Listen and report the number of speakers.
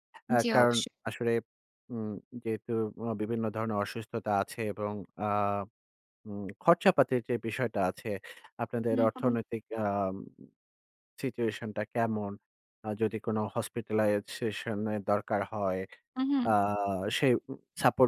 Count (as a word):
two